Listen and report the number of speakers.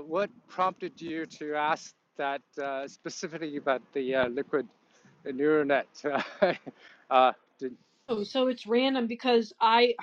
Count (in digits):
2